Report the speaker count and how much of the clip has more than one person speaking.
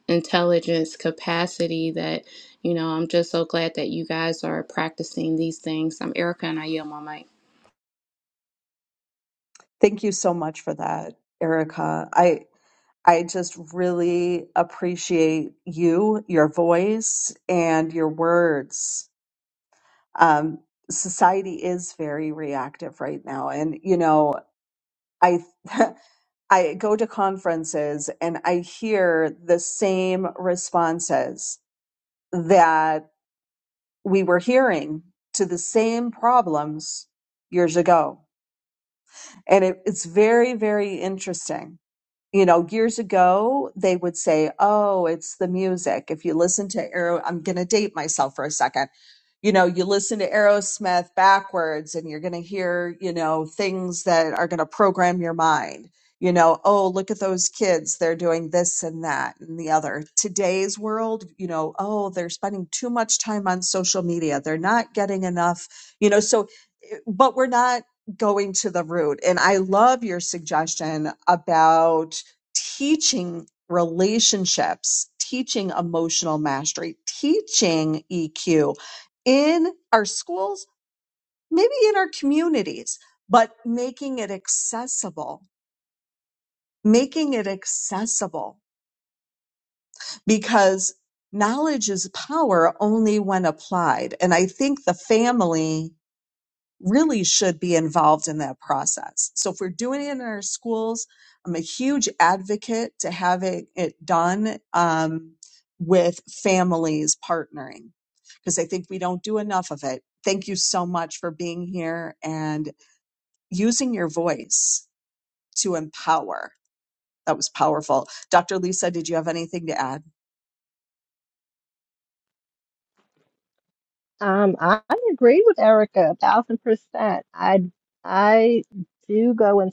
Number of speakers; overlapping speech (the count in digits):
3, no overlap